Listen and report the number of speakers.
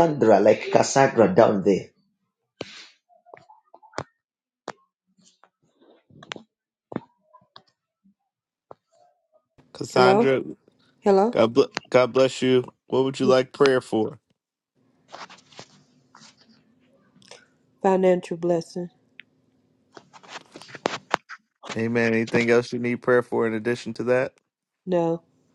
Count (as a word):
three